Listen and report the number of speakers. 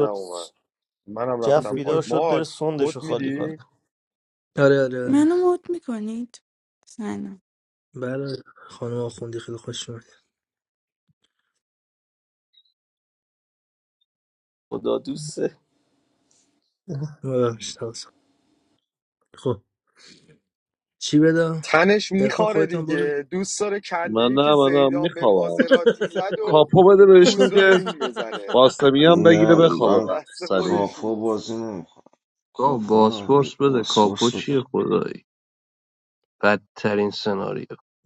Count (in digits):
7